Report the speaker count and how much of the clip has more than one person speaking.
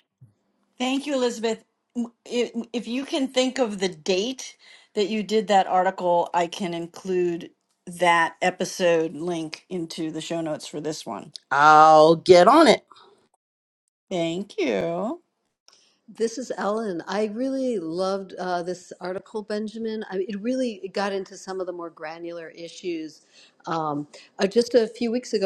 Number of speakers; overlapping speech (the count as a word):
three, no overlap